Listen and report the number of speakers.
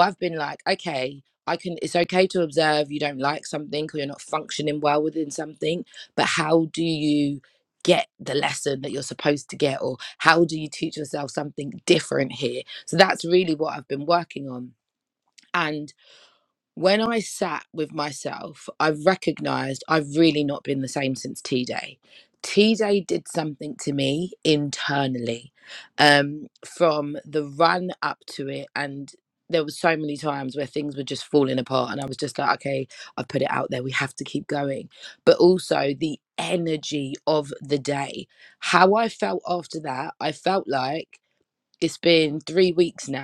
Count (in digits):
1